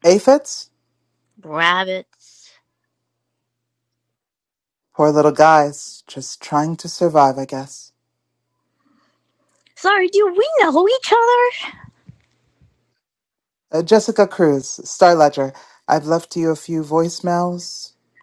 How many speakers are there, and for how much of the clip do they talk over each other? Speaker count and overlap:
two, no overlap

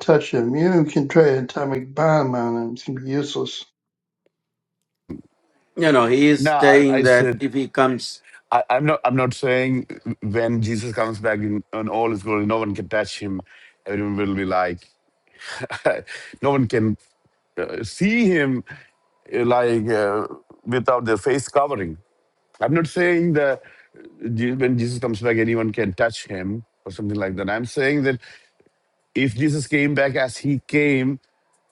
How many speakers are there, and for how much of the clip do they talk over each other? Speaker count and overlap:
three, about 3%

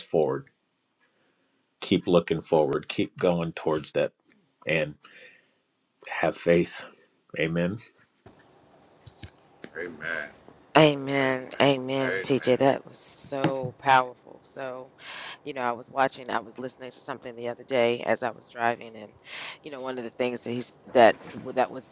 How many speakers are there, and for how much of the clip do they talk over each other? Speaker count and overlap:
three, about 4%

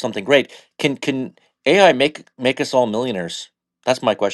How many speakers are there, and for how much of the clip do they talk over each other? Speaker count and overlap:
one, no overlap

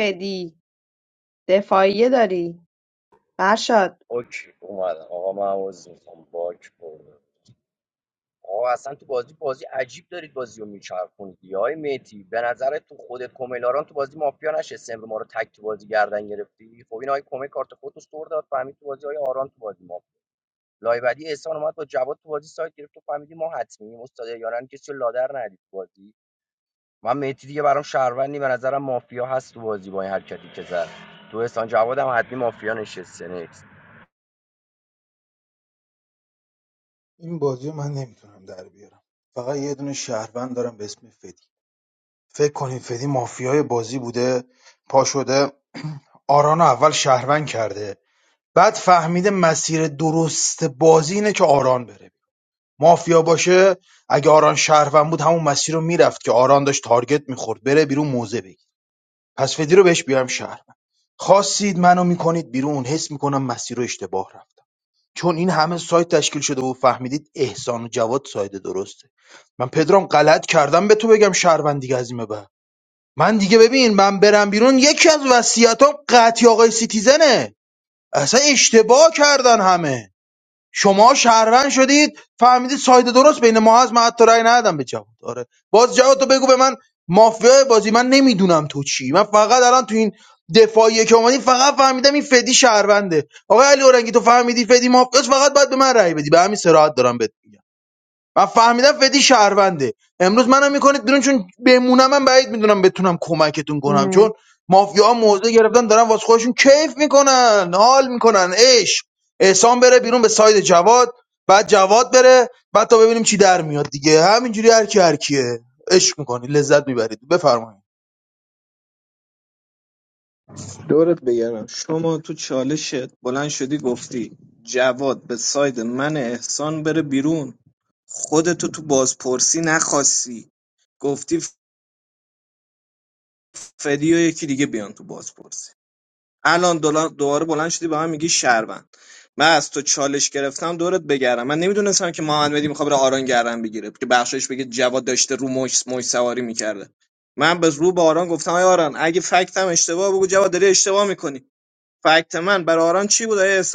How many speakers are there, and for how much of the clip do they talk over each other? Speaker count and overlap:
four, under 1%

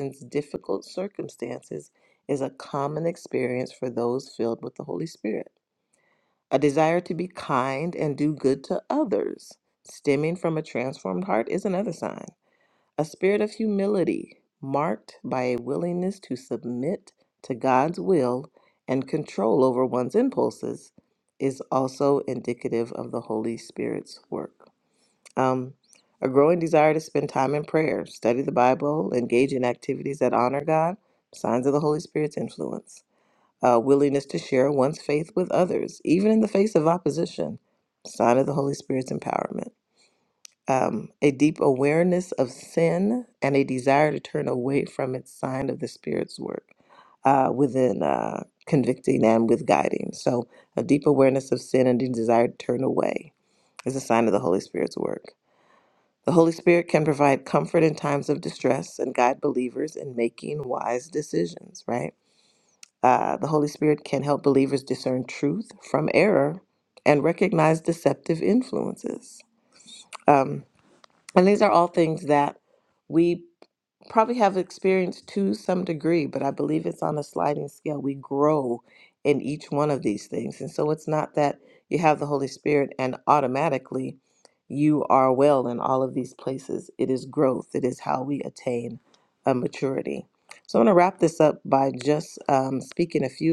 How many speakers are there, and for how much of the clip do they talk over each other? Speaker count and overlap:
one, no overlap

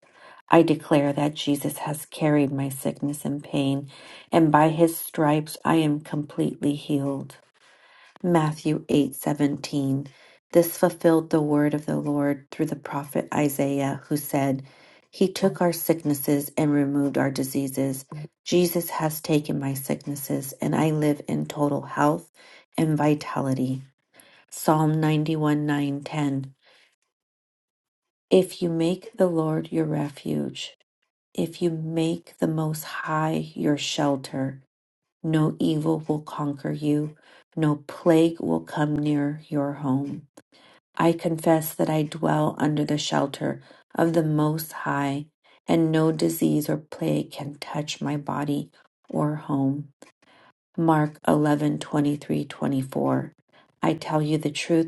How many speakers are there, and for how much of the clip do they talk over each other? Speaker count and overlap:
one, no overlap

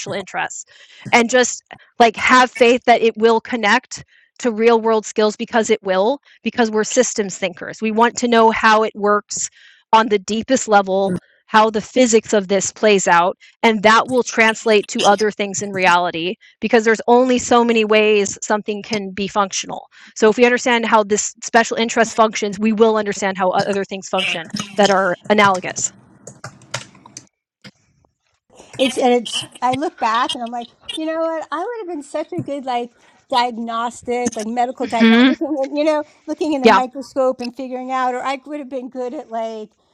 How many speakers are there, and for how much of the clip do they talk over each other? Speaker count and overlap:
two, about 2%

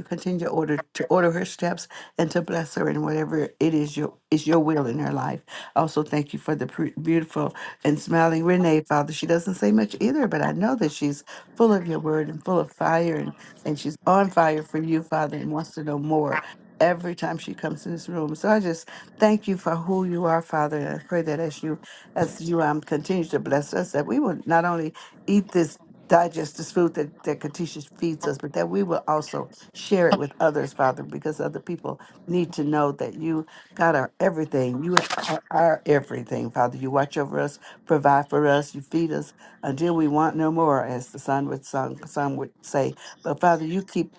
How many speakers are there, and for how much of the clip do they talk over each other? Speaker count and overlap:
one, no overlap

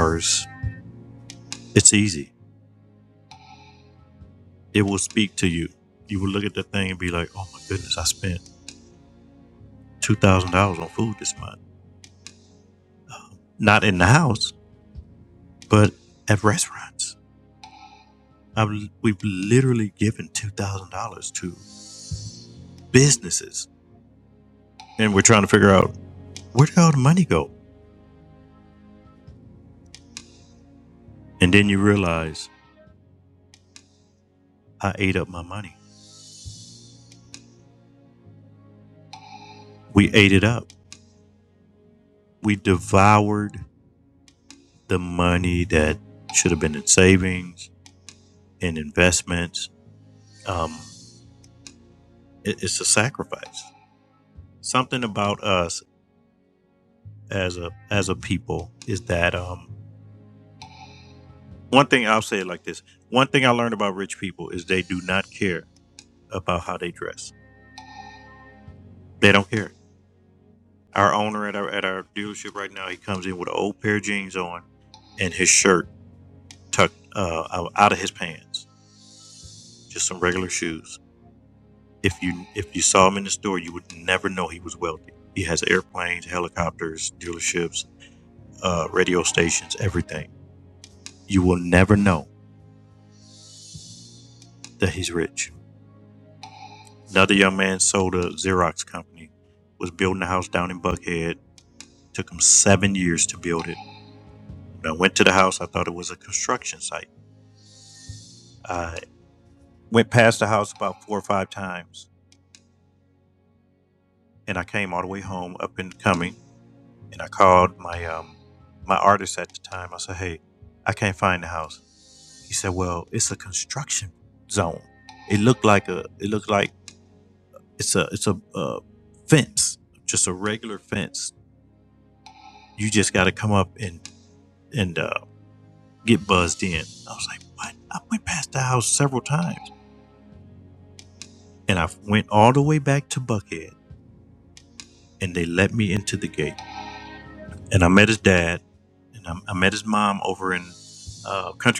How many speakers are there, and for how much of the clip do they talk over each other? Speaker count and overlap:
one, no overlap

